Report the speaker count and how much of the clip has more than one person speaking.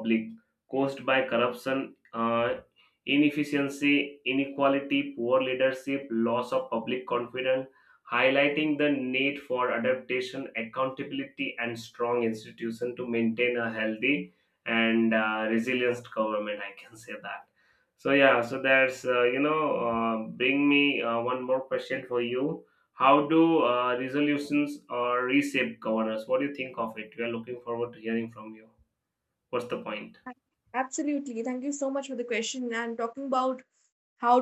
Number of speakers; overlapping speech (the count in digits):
2, no overlap